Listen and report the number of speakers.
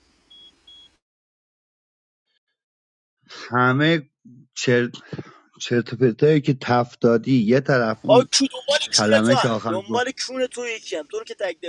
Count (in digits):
2